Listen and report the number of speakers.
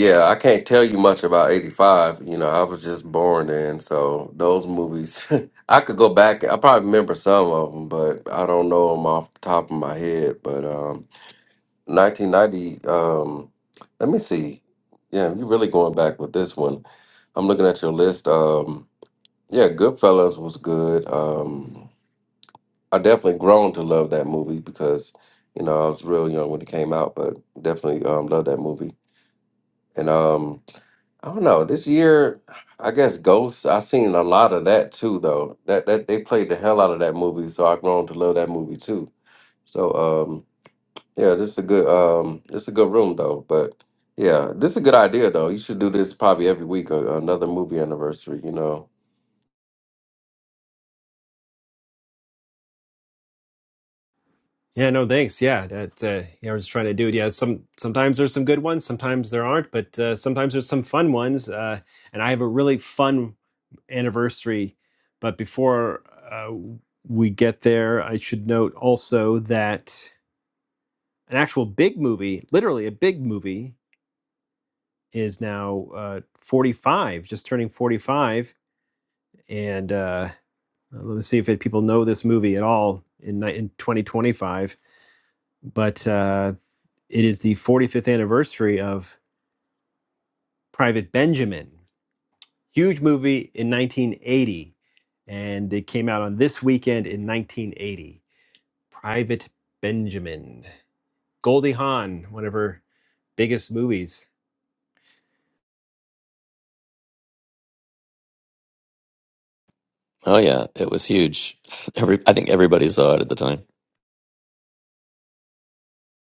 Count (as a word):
three